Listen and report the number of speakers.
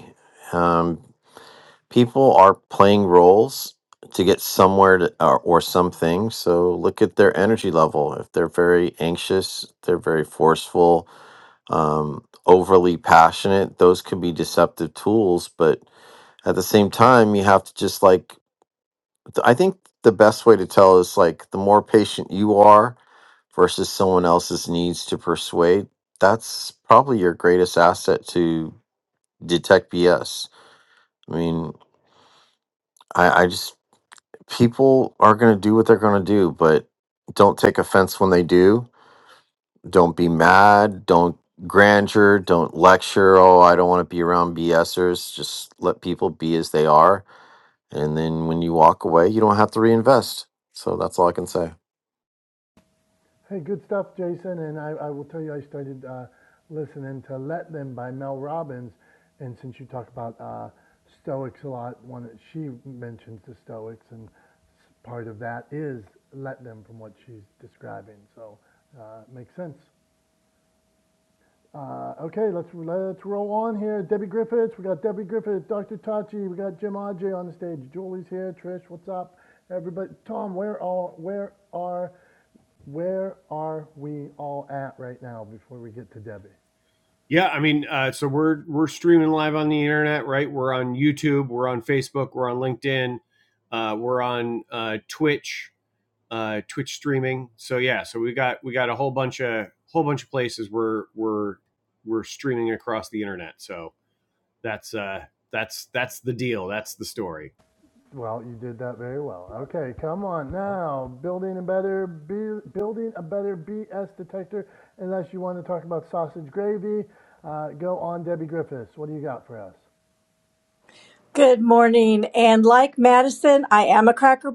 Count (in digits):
4